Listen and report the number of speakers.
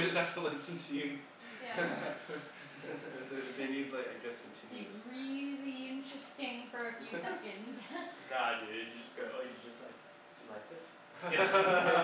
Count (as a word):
four